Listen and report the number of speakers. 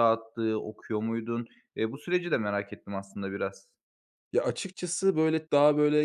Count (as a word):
two